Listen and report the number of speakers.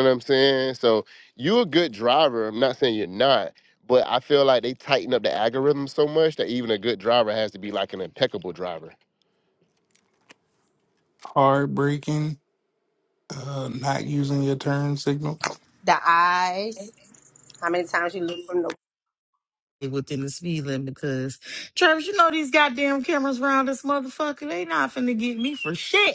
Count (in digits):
4